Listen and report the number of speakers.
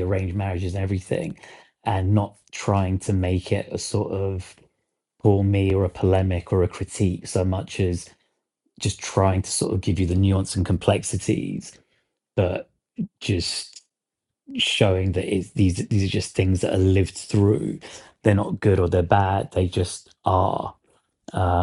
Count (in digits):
1